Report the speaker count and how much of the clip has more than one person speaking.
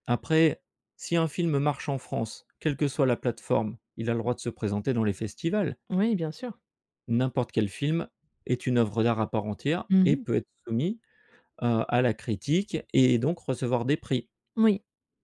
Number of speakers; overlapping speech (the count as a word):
two, about 2%